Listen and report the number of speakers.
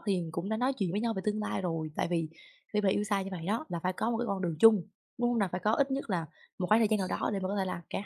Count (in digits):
1